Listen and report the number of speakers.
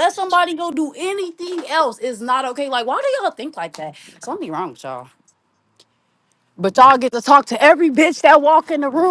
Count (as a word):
one